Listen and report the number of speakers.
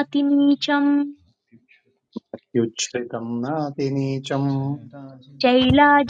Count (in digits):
3